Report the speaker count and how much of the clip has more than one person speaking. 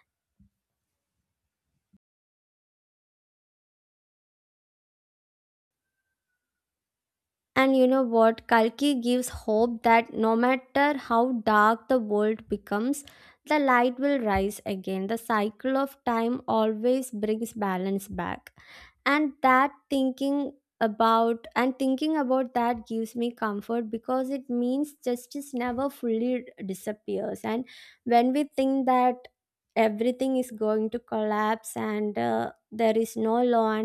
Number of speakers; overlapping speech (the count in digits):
1, no overlap